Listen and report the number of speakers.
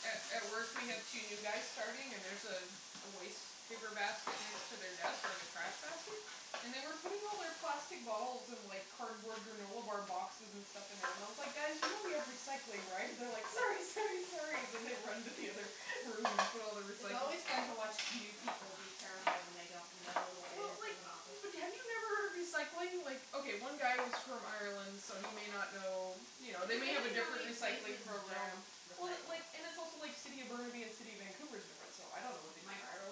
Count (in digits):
2